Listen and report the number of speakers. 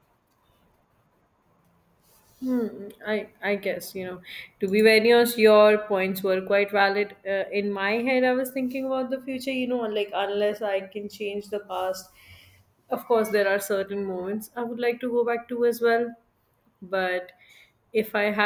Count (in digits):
1